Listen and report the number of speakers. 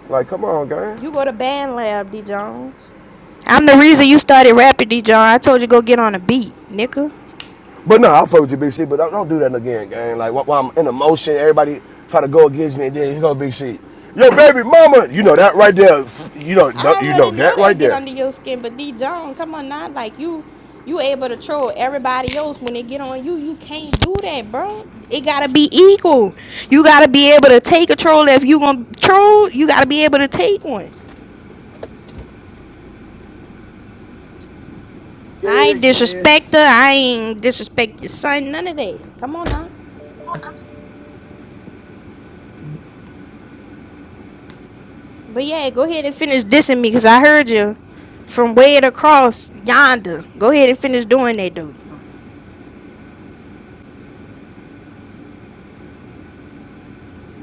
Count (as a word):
two